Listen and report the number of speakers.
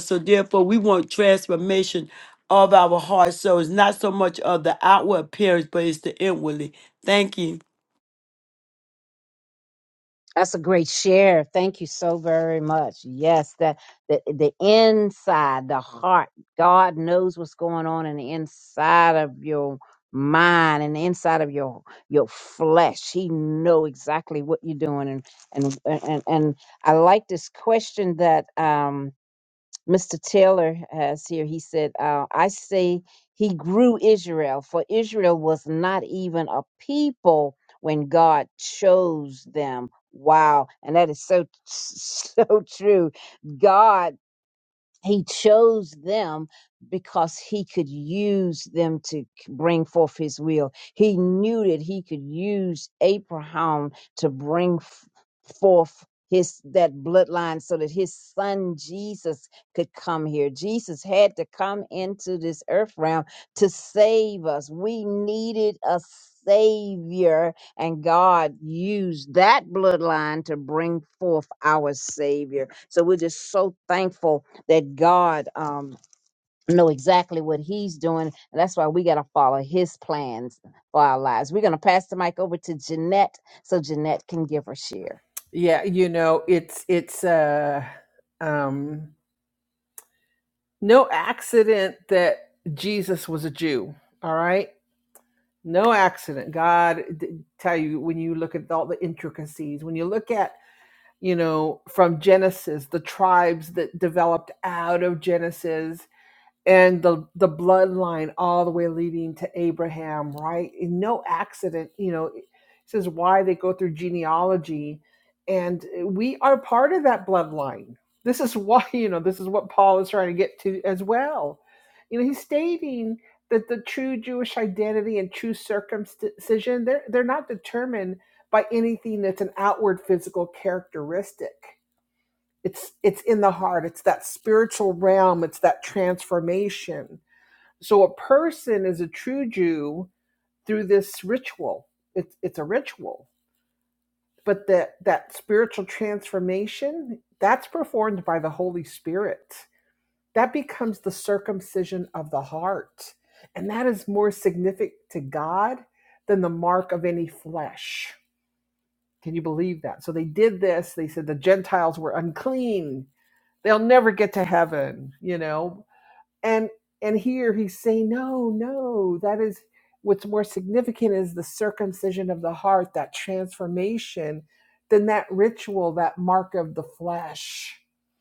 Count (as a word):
three